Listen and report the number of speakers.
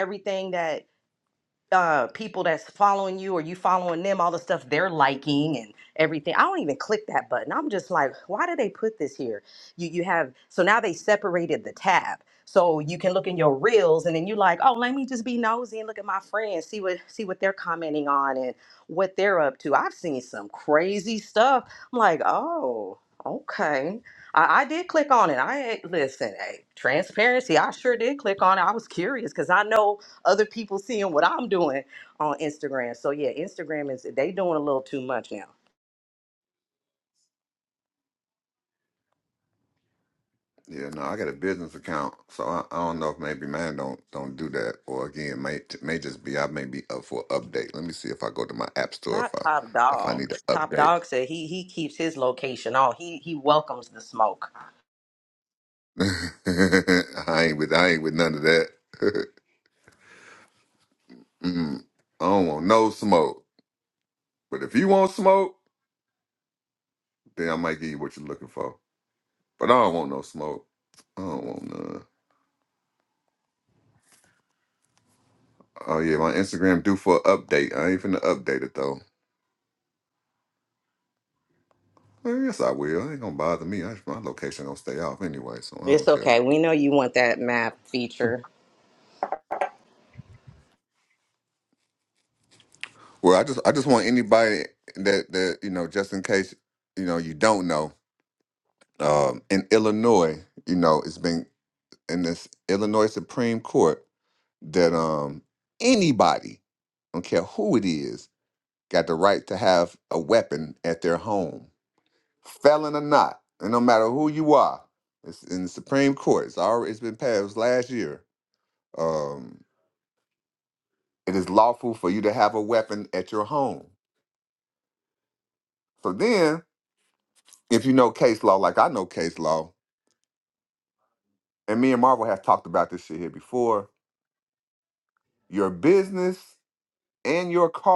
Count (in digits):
2